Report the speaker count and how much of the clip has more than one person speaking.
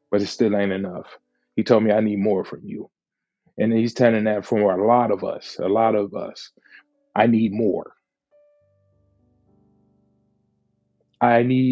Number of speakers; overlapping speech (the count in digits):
1, no overlap